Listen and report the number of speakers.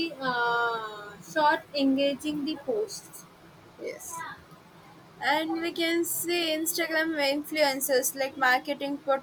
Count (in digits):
2